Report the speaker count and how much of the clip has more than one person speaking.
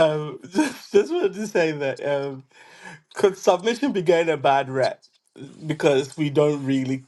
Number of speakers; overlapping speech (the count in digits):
1, no overlap